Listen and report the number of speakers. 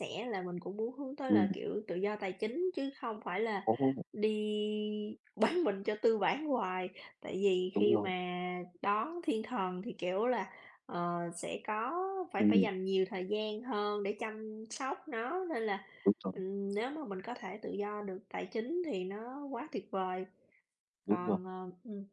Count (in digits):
2